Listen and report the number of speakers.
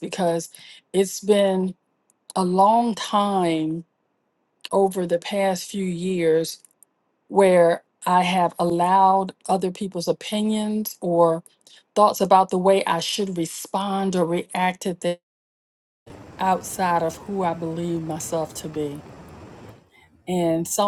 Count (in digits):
1